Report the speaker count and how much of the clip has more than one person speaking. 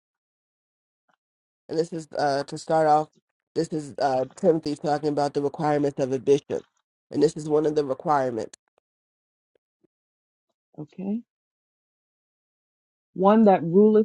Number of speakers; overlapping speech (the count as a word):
two, no overlap